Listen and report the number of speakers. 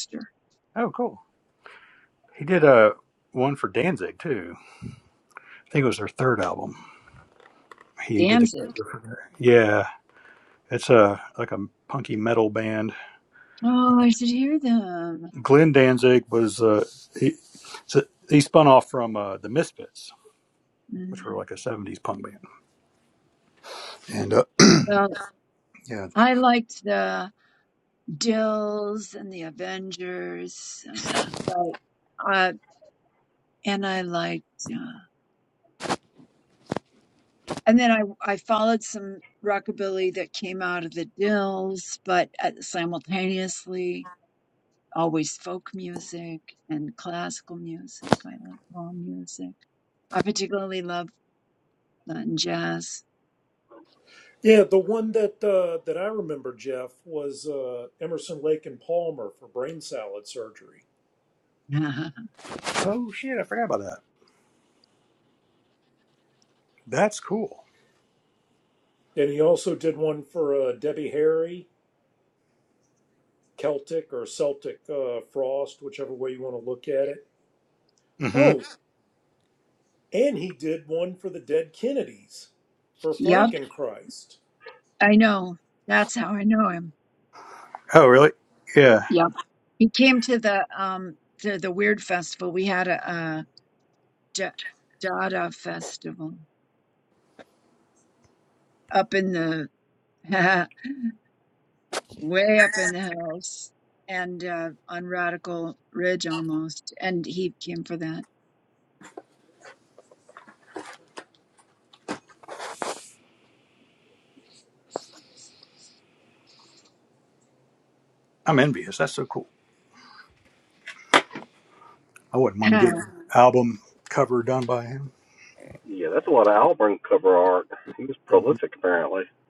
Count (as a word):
four